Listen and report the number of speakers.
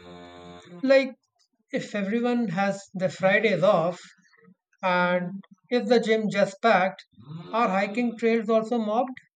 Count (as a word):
one